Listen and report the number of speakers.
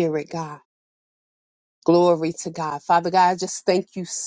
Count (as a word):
one